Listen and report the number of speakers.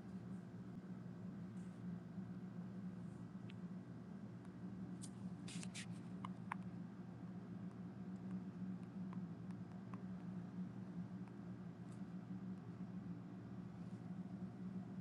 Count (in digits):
0